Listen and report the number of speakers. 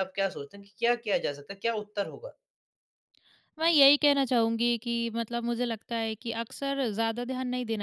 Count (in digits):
2